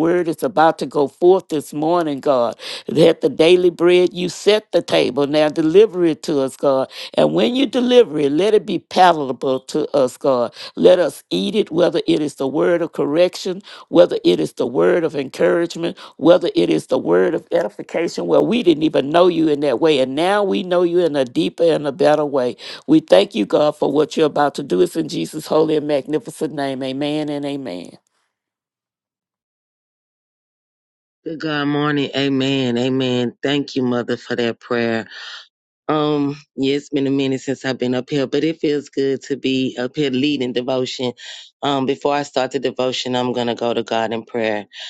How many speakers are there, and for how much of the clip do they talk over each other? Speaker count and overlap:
2, no overlap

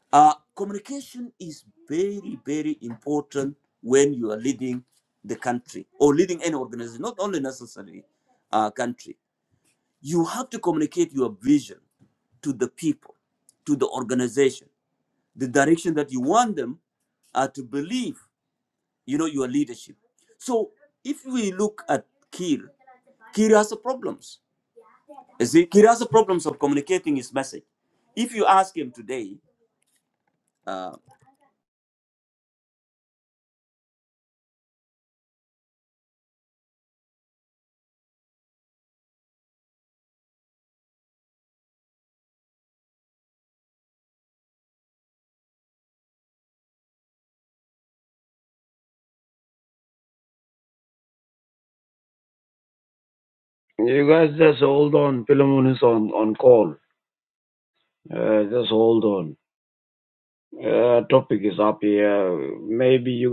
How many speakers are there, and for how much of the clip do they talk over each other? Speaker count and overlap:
2, no overlap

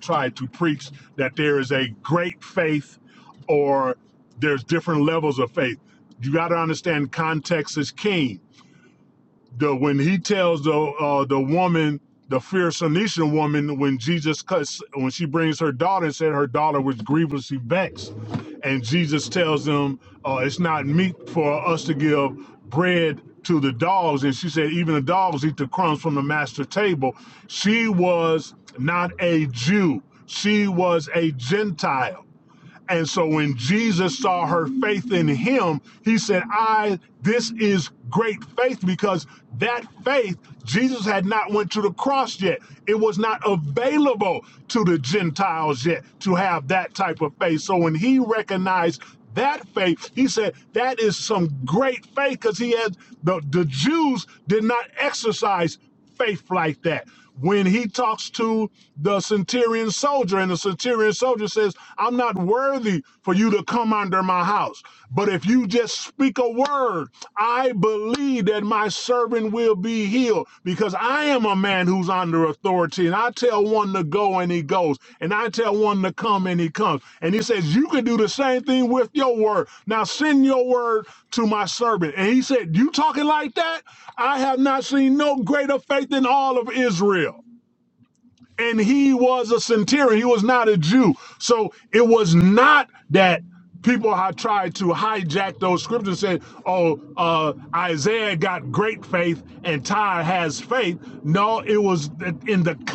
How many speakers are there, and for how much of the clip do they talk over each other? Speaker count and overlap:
1, no overlap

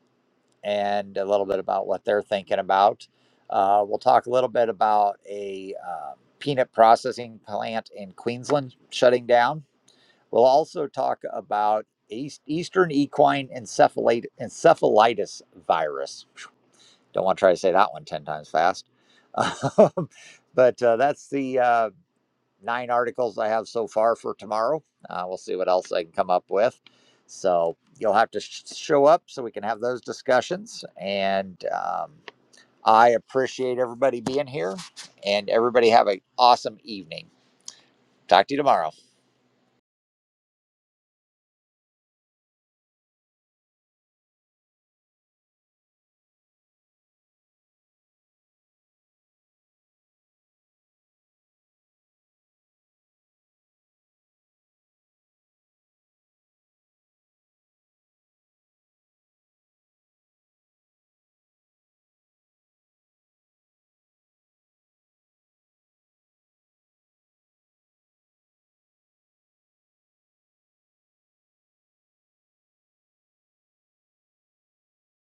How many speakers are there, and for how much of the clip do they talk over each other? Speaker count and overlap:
1, no overlap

